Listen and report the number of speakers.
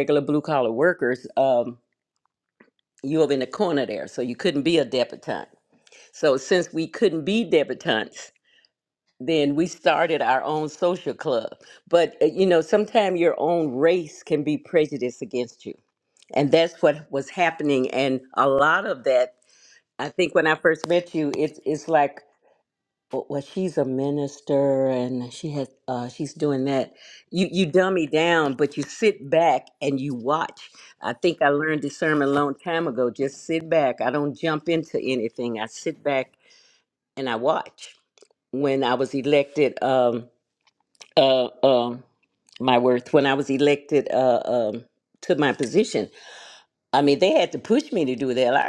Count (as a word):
one